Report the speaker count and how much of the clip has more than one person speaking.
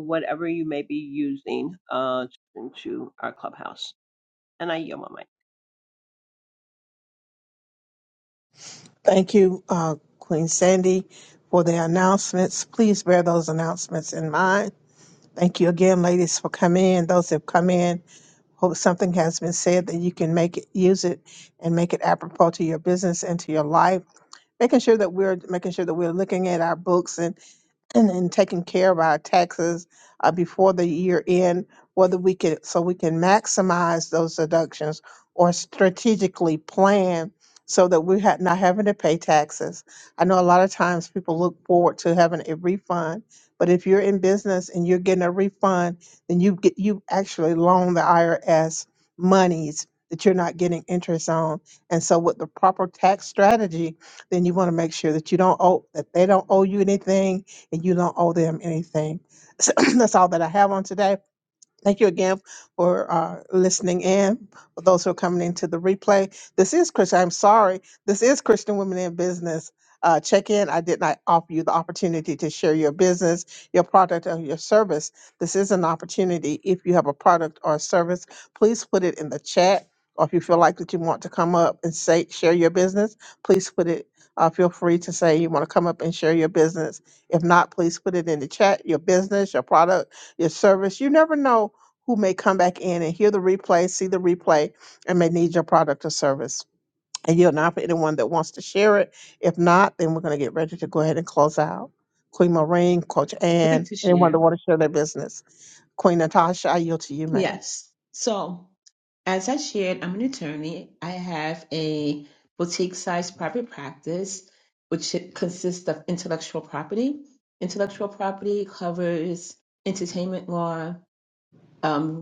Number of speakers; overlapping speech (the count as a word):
three, about 1%